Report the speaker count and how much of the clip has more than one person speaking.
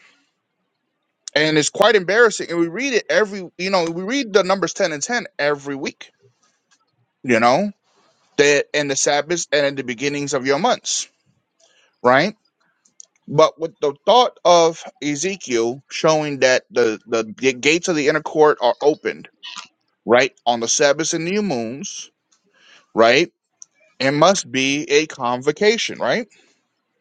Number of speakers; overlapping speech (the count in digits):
1, no overlap